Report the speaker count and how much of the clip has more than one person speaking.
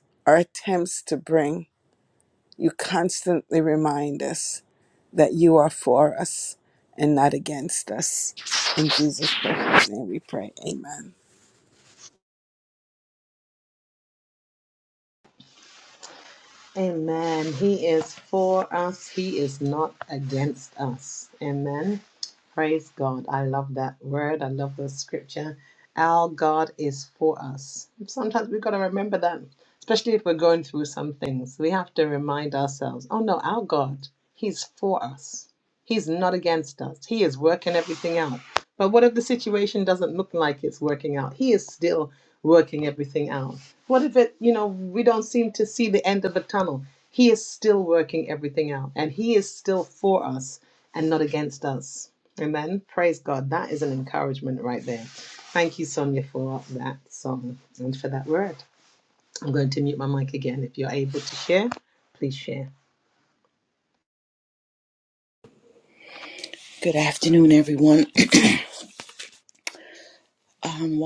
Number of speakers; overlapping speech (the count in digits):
3, no overlap